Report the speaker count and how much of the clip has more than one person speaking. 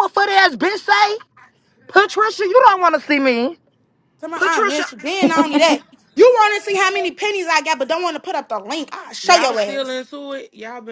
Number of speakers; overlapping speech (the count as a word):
three, about 10%